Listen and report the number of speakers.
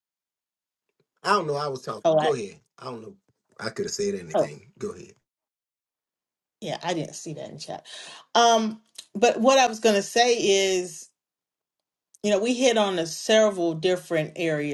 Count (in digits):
2